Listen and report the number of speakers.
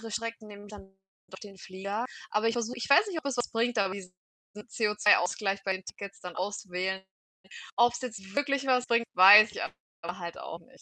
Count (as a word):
one